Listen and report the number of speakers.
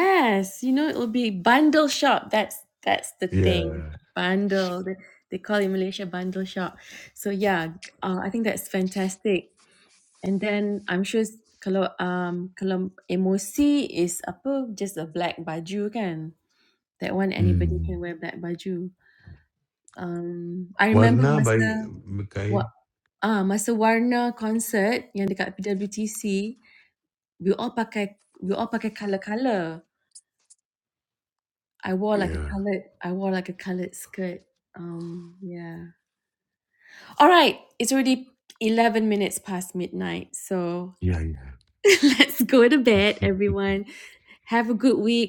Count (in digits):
2